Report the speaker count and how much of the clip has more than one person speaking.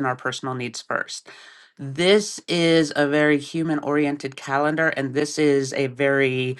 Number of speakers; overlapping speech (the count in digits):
1, no overlap